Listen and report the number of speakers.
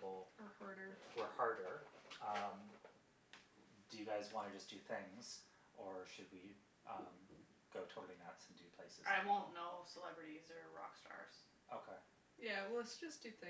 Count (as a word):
three